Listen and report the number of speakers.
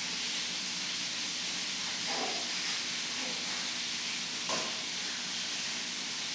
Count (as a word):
zero